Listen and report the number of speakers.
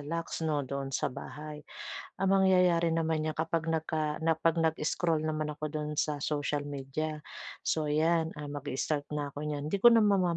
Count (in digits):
1